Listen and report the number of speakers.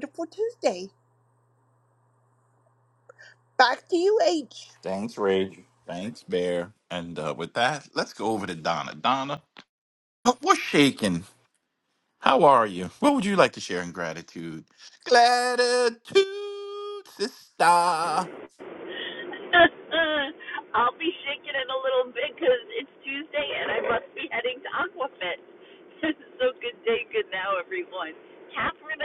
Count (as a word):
three